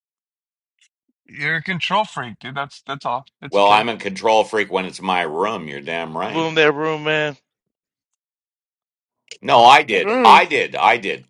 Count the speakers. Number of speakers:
3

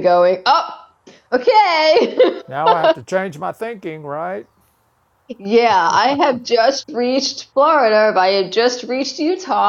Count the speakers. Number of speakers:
2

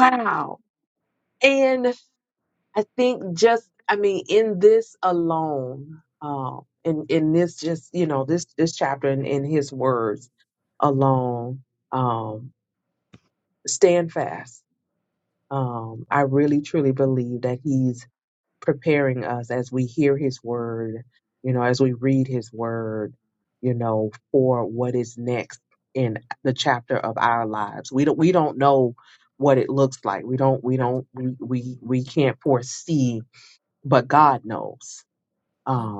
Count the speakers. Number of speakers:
1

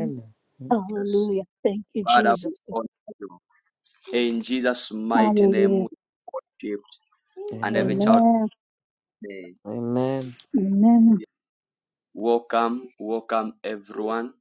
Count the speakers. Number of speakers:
3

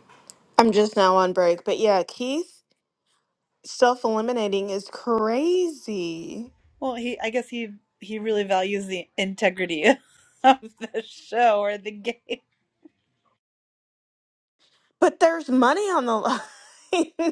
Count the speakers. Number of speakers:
2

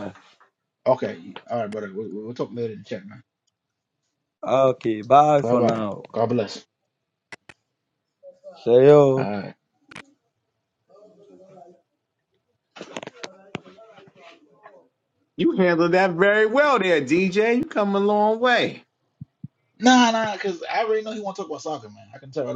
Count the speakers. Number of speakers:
3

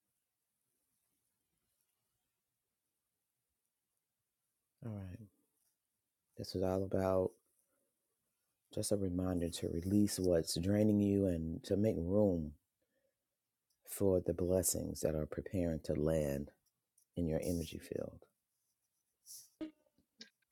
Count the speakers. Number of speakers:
1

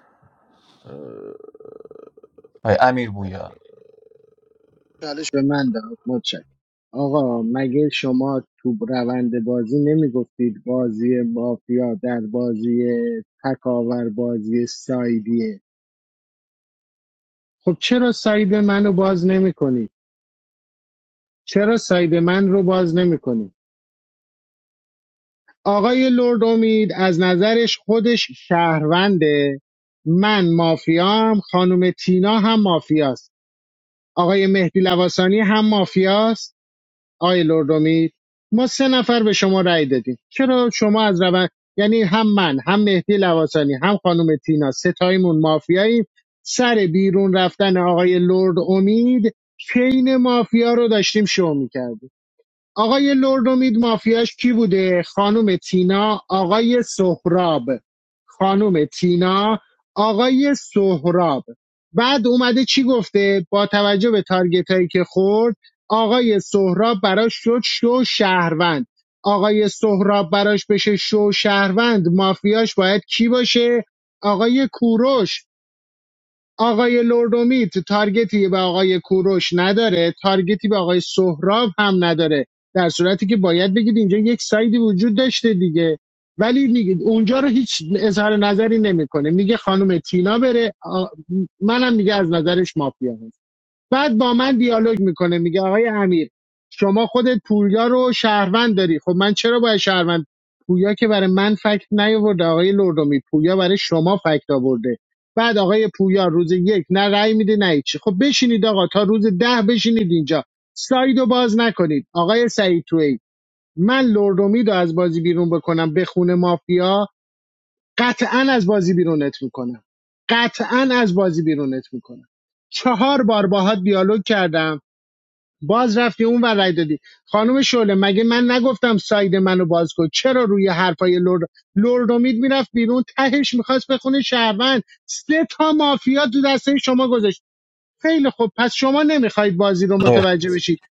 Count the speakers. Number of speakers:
2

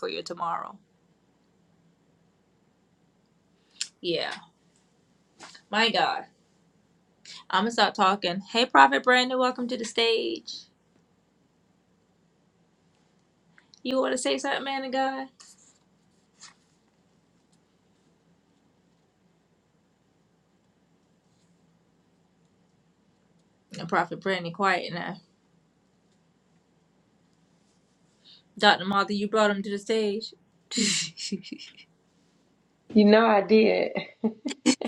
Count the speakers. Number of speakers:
2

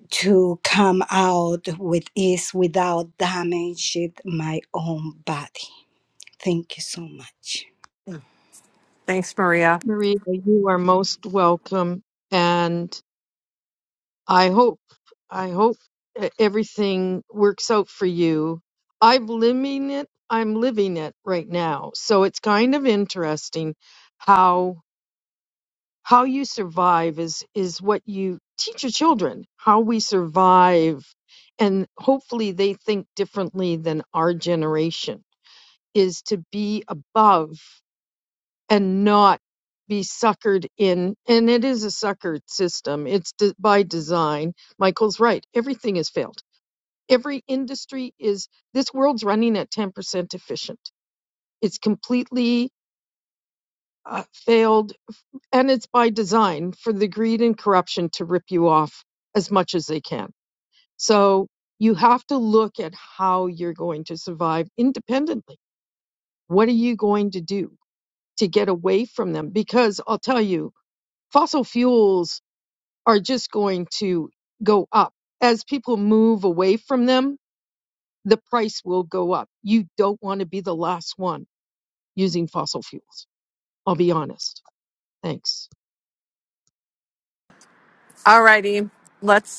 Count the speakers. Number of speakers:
3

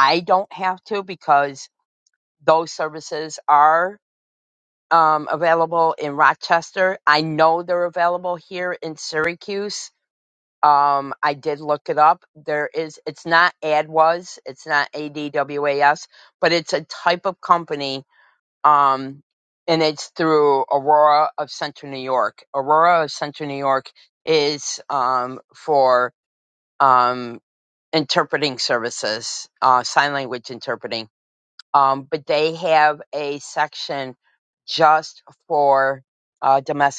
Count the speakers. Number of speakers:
1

